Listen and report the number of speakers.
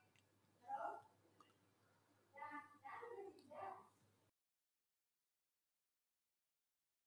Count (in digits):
0